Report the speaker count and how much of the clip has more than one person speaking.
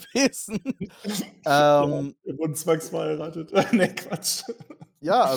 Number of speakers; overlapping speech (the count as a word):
two, about 4%